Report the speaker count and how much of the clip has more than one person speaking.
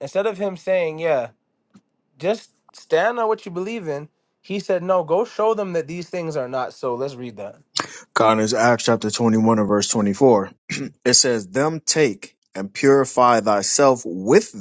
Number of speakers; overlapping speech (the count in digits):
2, no overlap